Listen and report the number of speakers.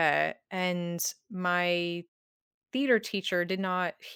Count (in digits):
1